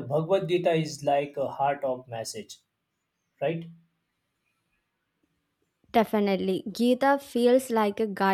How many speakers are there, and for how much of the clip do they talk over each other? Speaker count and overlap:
2, no overlap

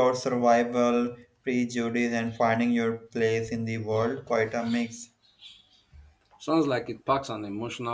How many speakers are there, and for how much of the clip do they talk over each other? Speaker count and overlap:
2, no overlap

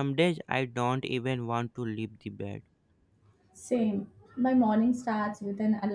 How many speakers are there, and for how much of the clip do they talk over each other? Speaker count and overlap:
2, no overlap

